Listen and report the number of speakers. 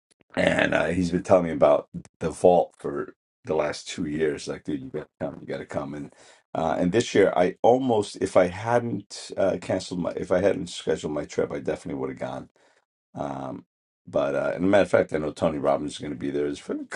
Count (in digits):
1